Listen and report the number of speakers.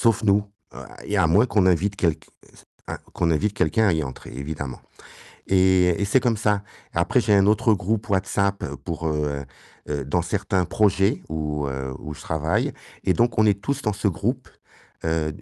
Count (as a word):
one